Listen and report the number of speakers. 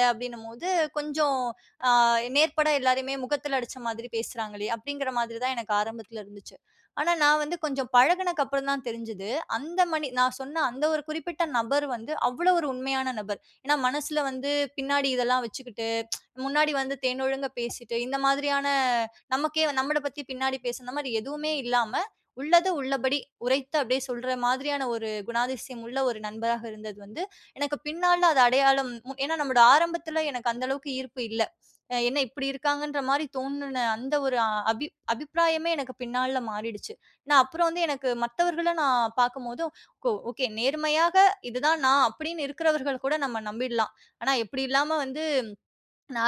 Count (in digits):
1